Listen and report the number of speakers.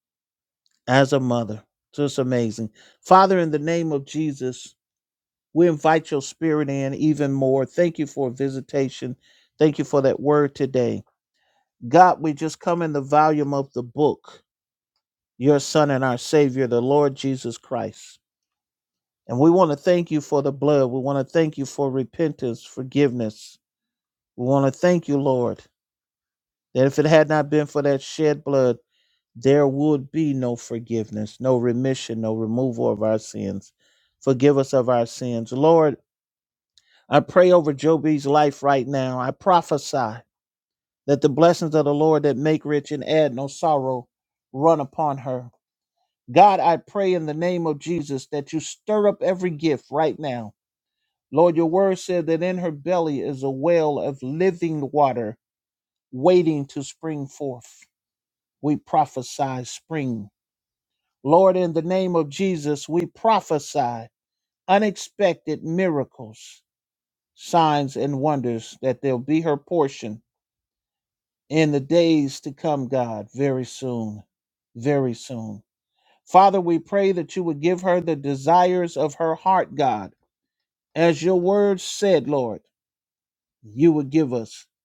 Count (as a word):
one